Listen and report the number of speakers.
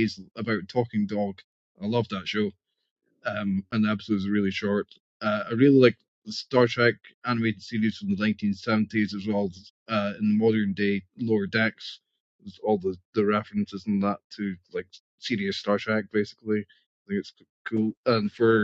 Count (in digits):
1